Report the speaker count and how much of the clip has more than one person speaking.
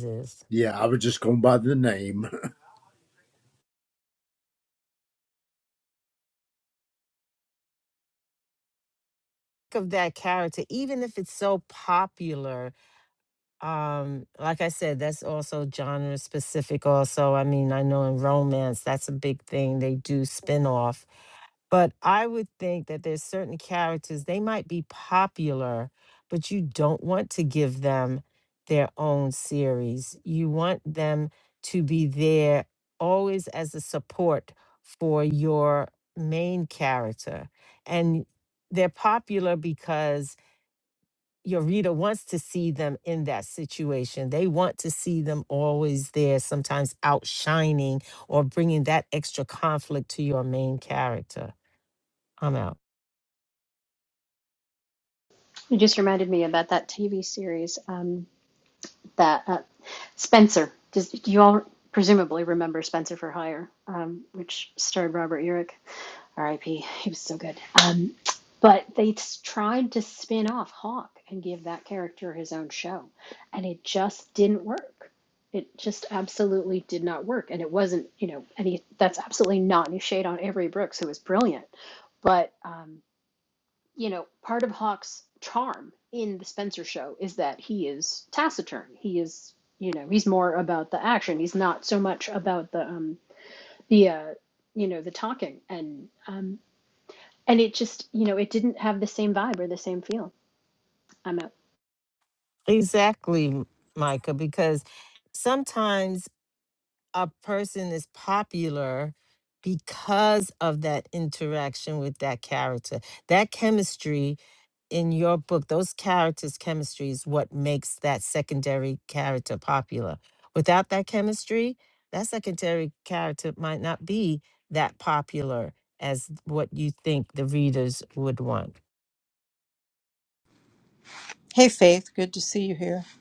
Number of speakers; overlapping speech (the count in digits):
4, no overlap